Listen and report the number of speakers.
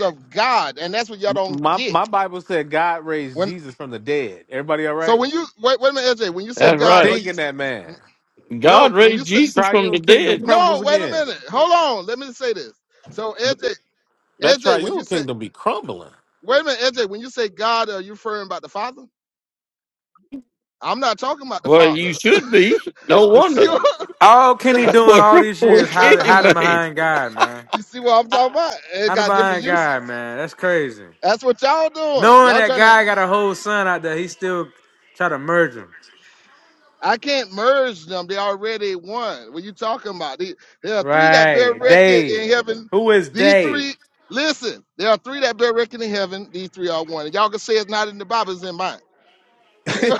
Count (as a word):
four